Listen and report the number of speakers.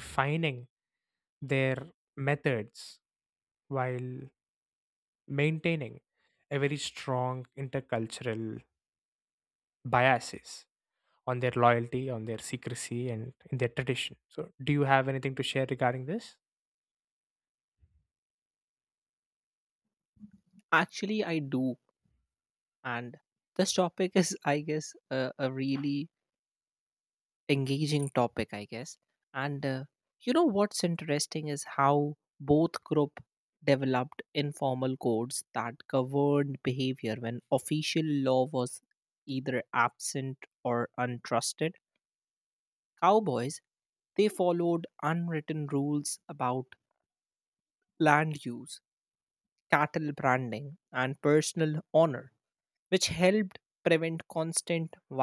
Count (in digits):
2